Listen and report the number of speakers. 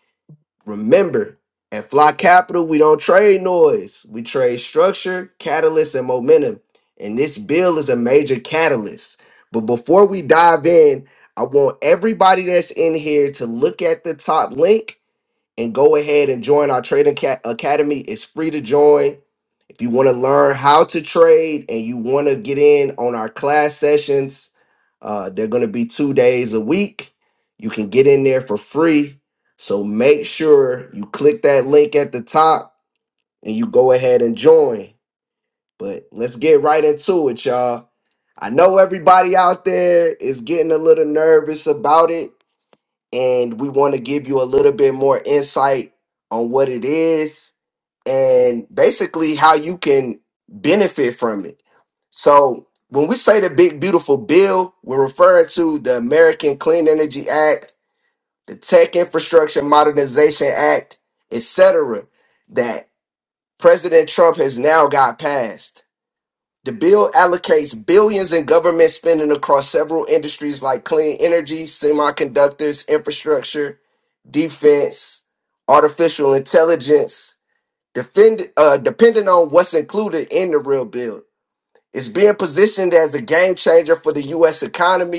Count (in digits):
1